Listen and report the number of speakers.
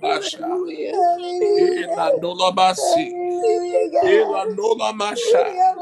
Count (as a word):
three